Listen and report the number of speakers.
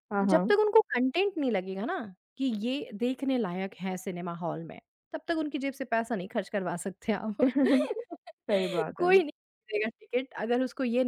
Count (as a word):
two